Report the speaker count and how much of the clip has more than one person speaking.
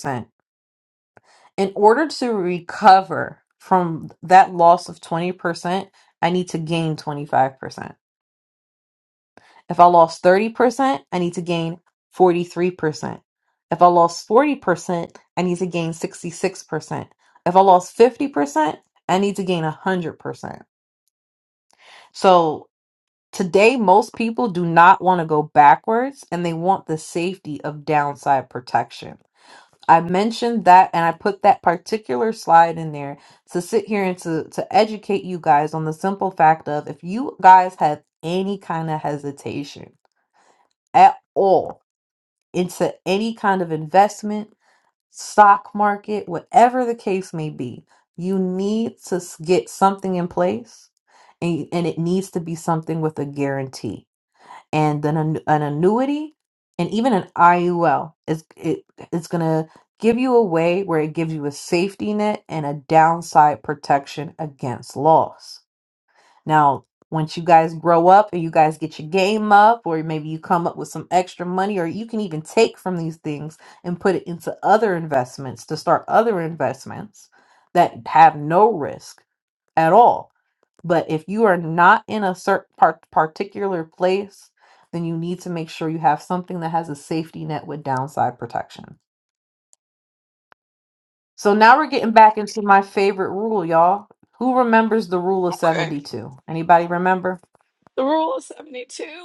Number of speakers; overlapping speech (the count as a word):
two, under 1%